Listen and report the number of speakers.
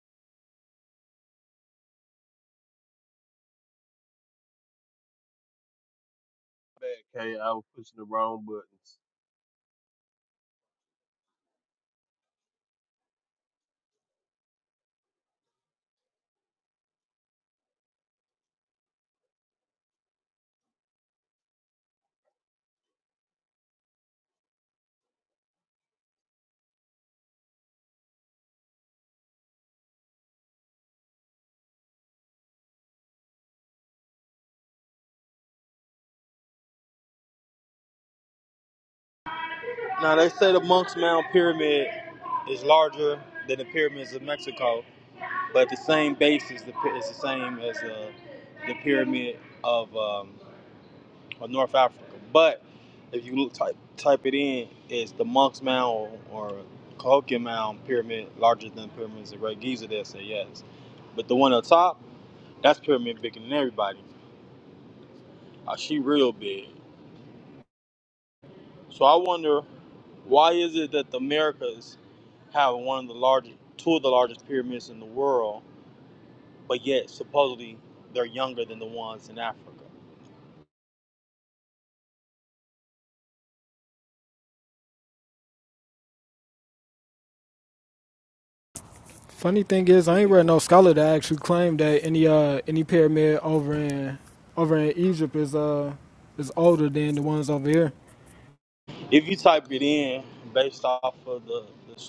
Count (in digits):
3